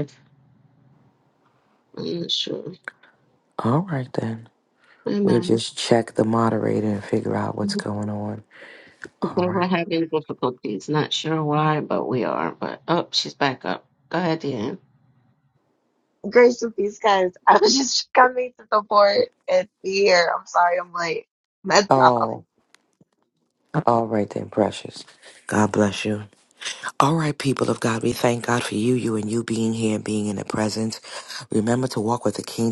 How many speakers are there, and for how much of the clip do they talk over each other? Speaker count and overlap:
3, about 4%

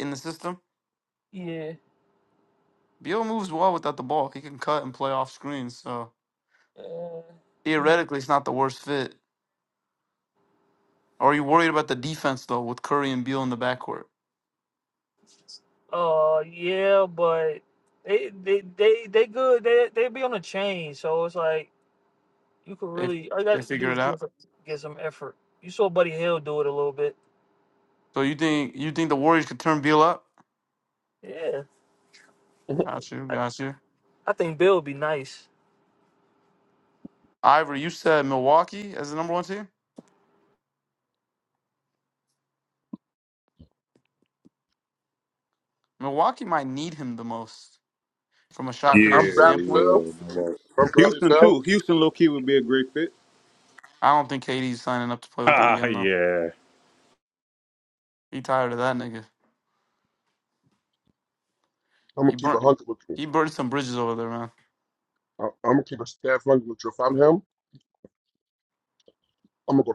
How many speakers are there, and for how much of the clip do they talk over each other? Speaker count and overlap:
4, about 5%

